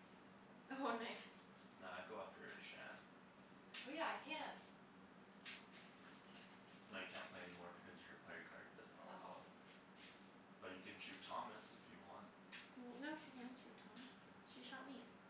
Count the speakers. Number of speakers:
3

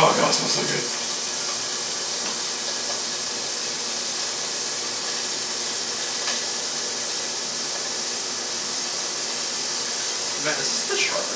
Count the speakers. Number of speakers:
1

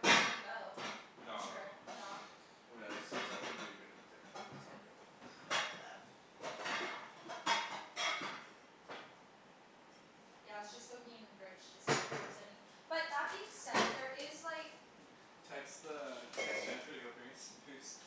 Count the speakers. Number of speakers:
3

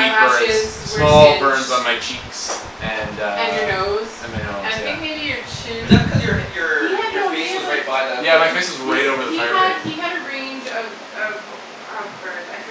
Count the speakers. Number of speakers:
3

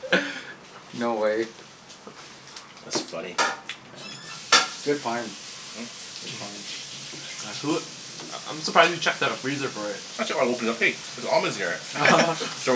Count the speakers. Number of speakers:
3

